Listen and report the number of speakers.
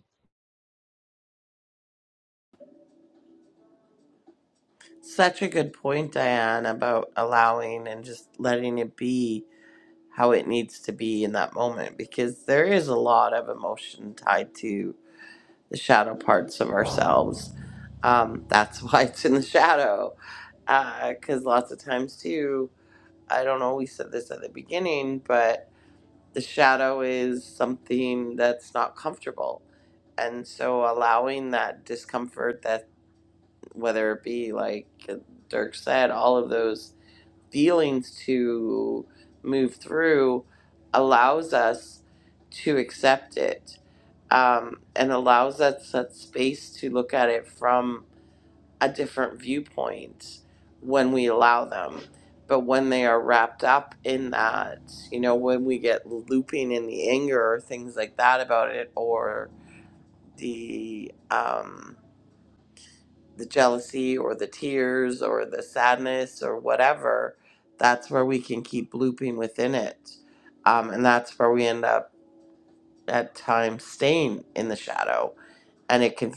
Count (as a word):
one